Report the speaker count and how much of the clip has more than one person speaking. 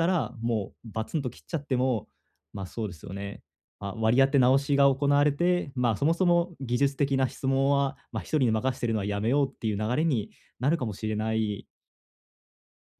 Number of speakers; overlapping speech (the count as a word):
one, no overlap